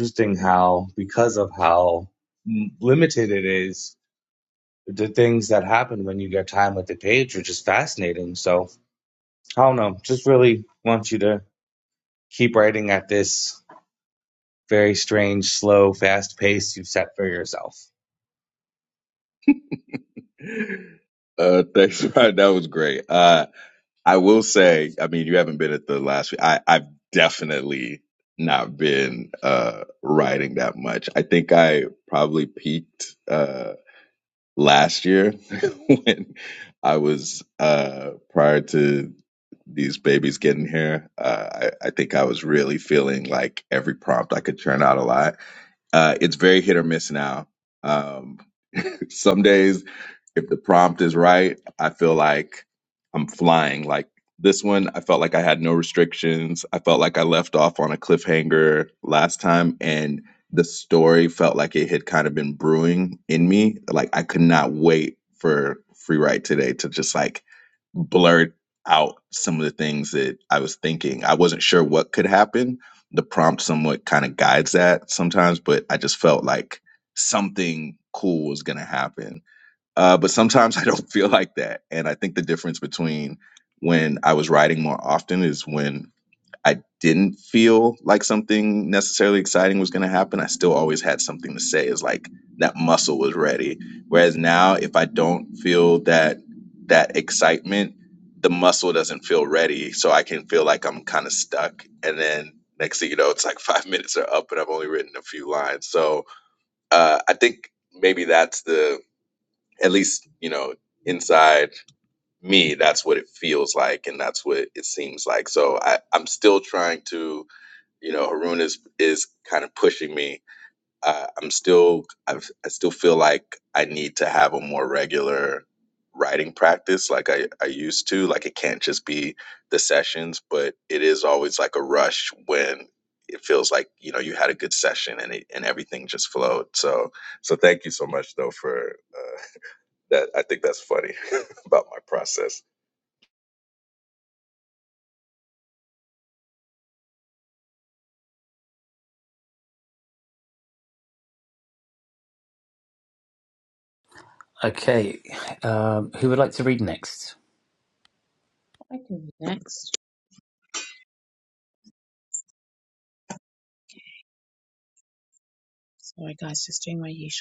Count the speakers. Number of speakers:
4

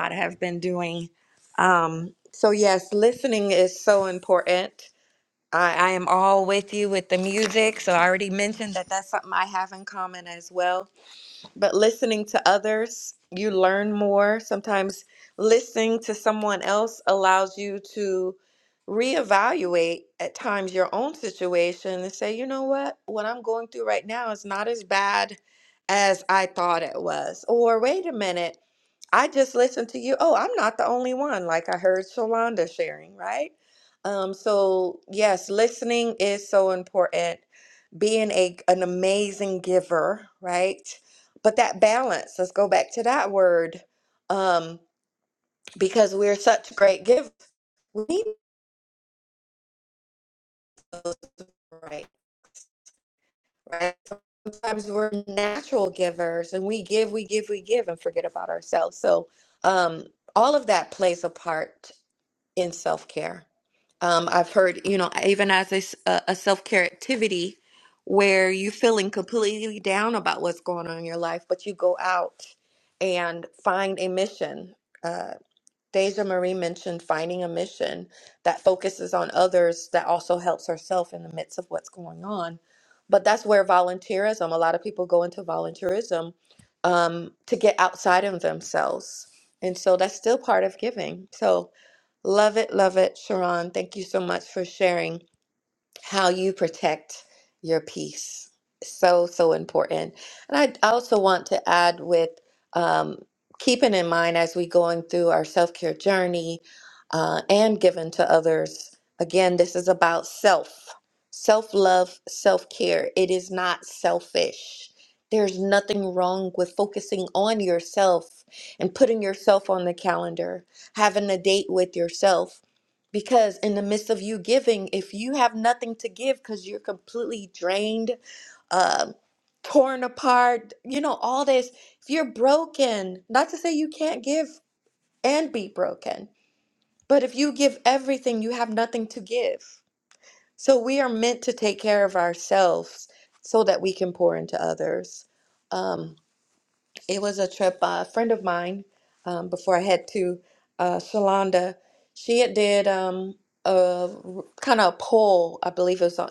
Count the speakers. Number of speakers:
1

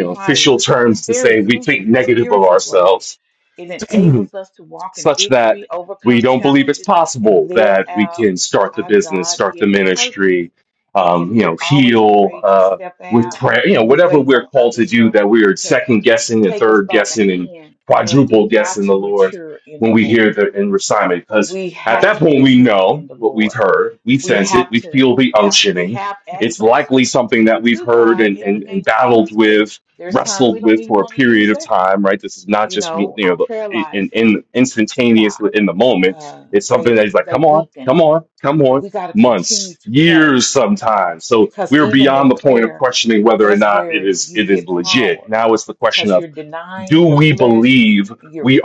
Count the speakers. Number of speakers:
2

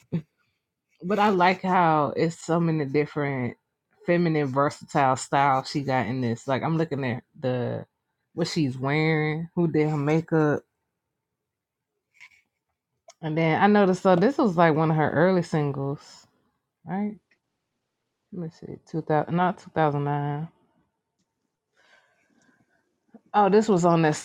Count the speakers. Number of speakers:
1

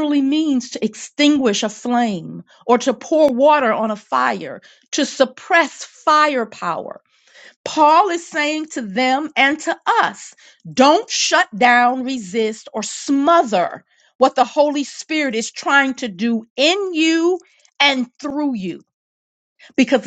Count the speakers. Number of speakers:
1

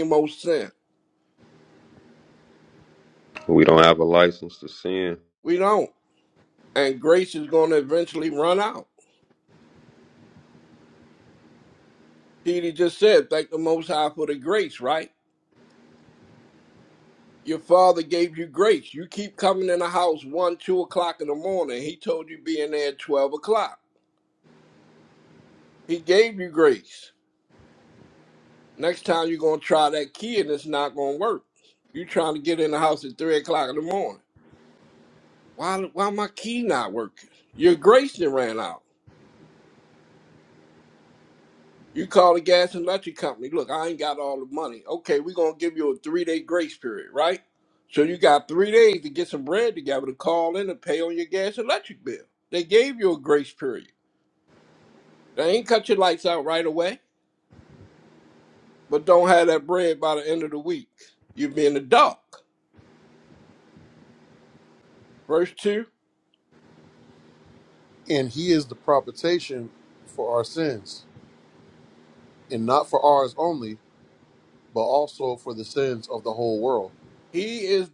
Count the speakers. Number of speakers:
3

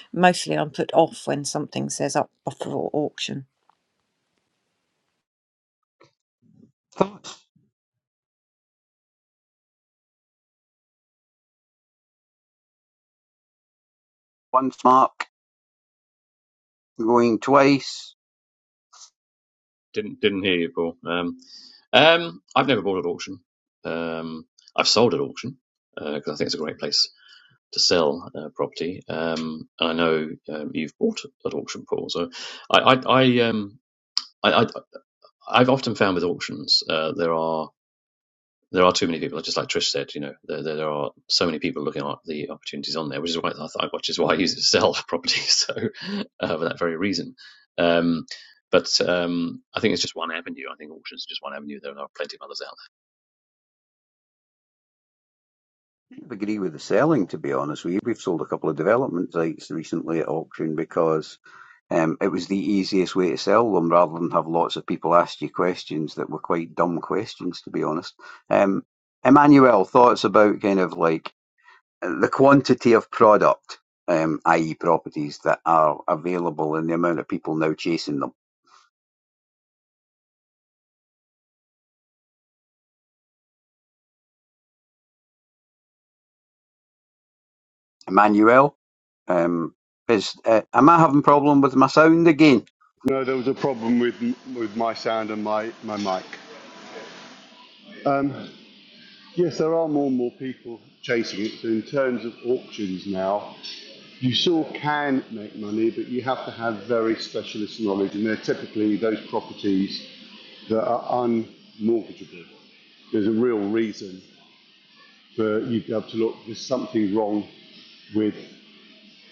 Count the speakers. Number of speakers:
4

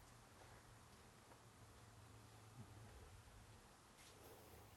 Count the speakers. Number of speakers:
0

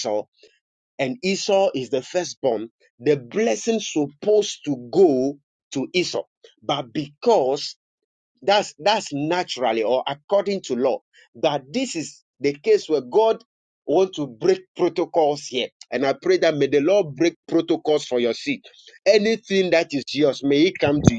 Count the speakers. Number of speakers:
1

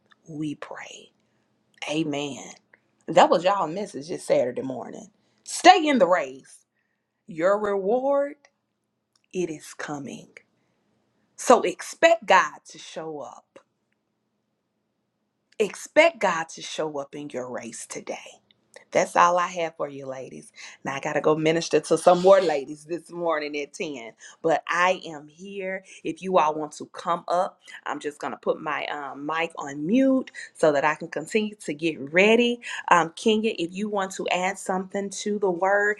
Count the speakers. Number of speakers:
1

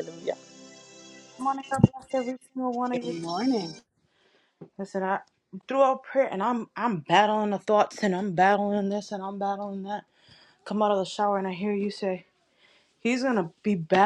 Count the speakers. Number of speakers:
2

